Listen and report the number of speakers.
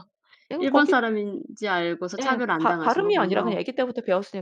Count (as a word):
two